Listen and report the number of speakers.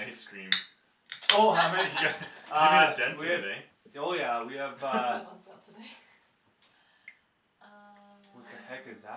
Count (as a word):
three